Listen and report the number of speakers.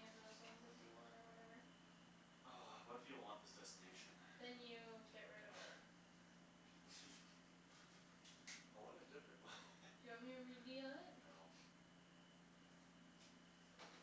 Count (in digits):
2